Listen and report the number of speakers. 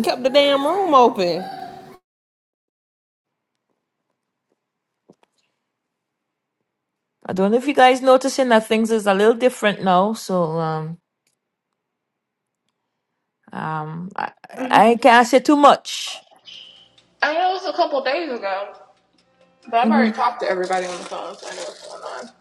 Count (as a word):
three